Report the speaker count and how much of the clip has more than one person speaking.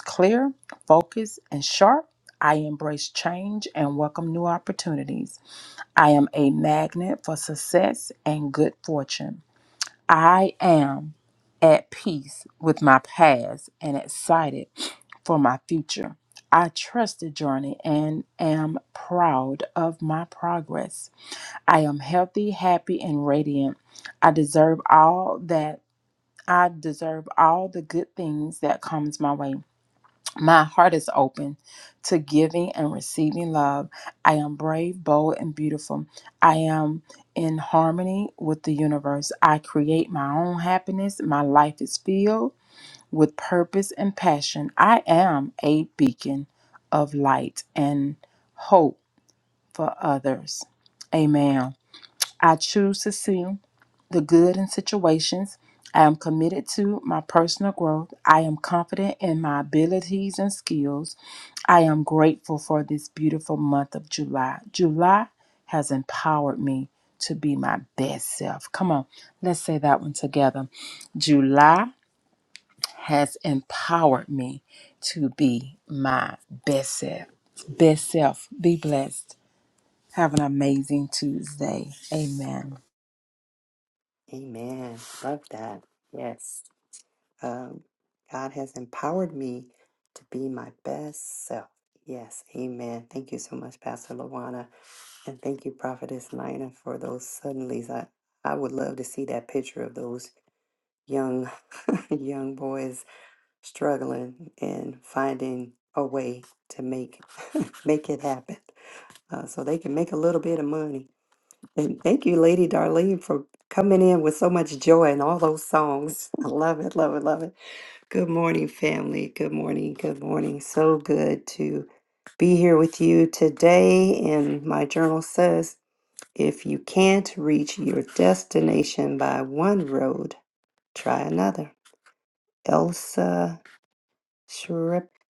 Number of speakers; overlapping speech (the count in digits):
2, no overlap